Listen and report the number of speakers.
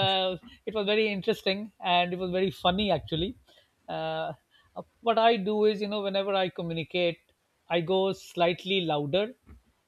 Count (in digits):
1